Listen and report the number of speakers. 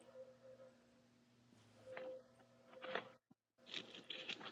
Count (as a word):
zero